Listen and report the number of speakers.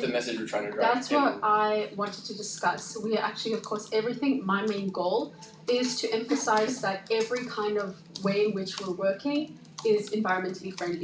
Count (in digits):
2